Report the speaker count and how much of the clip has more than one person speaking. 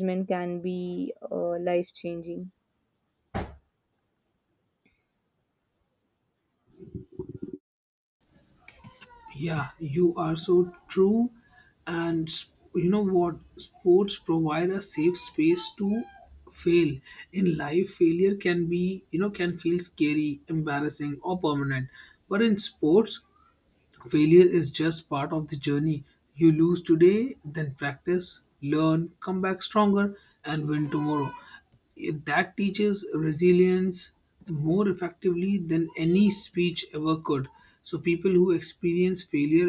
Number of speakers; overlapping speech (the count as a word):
two, no overlap